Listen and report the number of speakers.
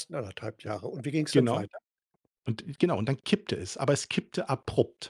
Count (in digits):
2